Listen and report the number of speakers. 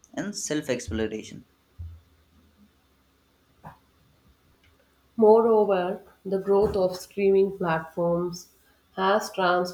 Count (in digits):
2